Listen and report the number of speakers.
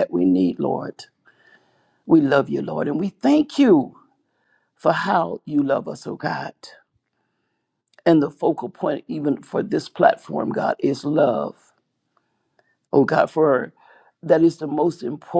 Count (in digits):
1